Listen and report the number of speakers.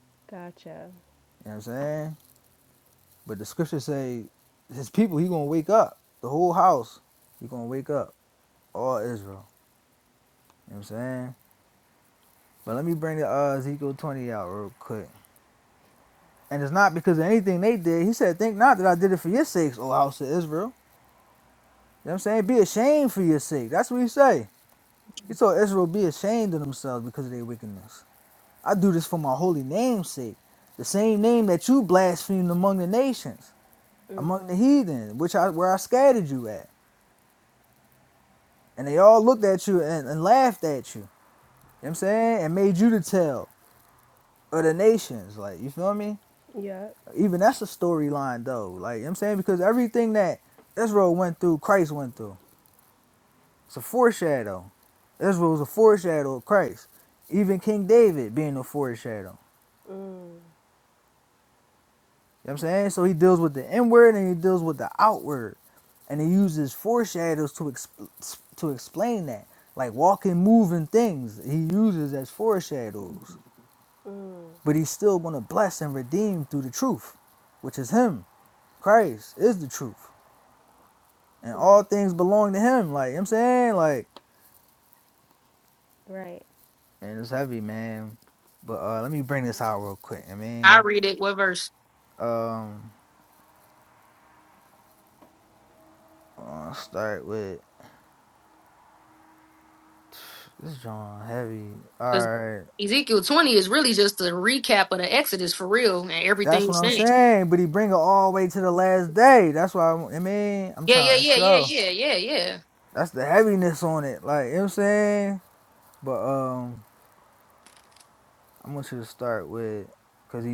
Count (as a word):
three